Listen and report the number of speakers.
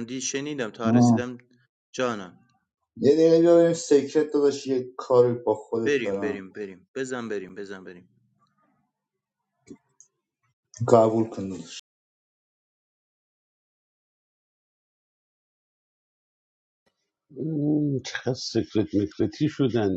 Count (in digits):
3